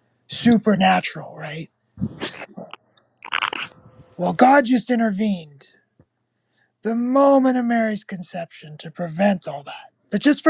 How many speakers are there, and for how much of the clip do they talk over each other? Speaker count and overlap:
1, no overlap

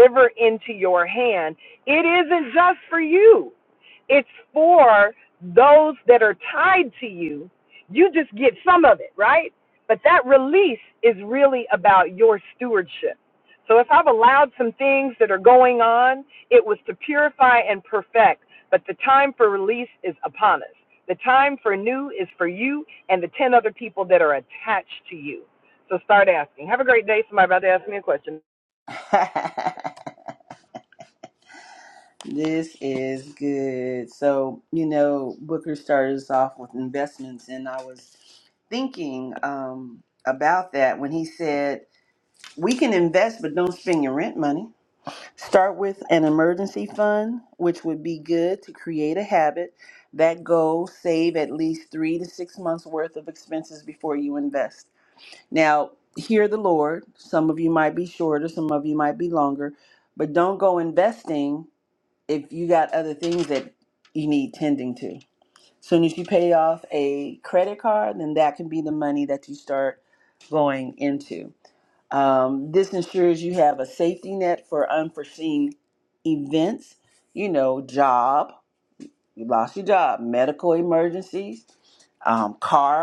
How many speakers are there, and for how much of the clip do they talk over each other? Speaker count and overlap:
2, no overlap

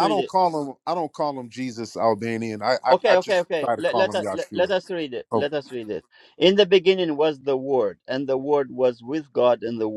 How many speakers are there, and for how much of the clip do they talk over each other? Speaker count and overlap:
2, about 22%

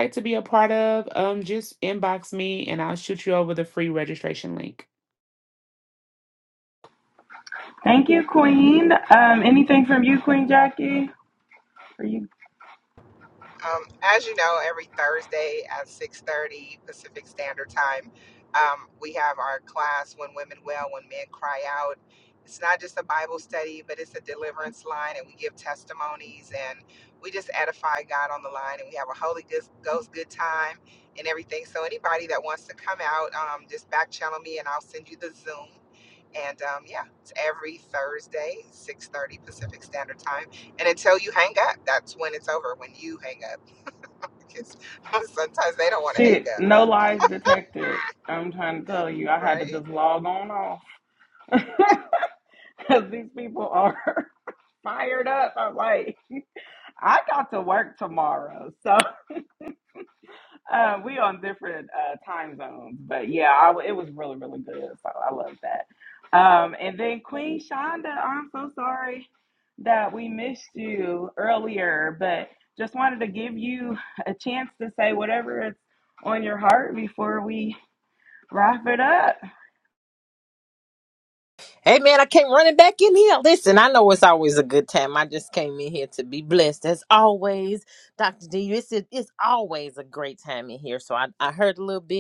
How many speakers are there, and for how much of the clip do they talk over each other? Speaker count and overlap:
4, about 1%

